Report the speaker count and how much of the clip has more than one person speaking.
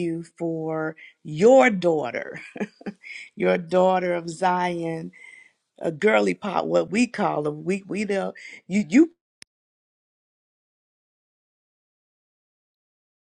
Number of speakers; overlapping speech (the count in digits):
1, no overlap